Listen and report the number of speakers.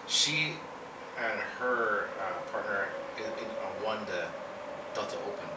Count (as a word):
one